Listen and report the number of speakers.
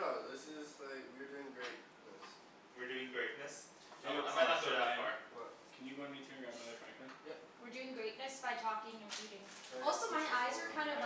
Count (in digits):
4